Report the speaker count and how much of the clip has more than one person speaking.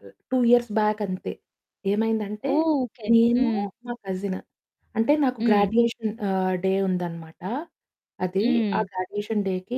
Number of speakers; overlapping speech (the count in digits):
2, about 15%